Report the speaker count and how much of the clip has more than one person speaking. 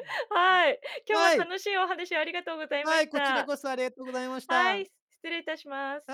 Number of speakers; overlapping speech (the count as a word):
two, about 21%